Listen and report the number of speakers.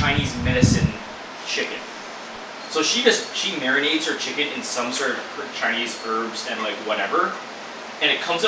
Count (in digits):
1